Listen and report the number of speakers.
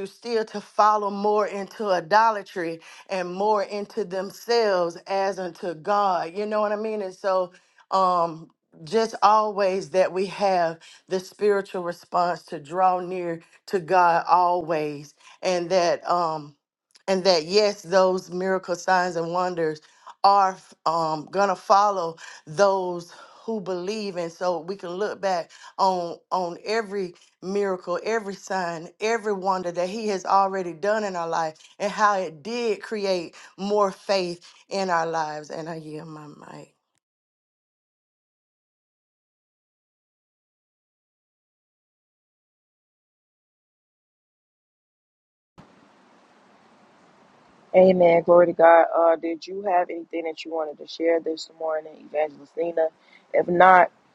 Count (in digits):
2